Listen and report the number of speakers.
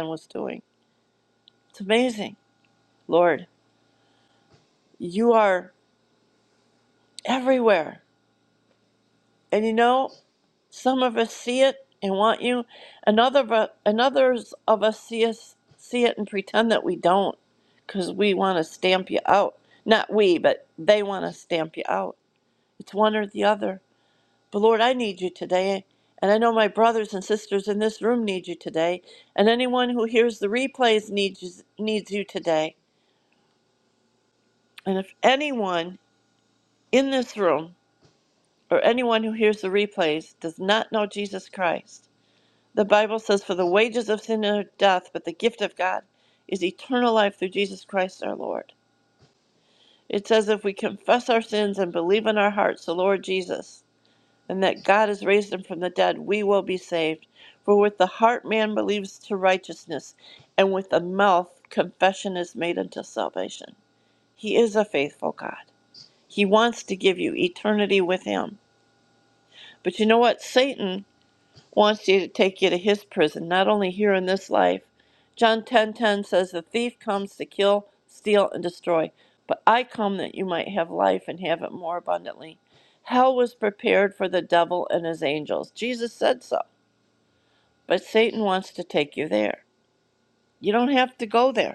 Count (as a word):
one